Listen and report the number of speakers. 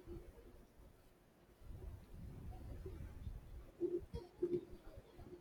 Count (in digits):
0